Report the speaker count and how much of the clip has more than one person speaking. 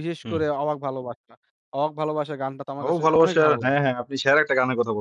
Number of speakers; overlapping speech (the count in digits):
2, about 20%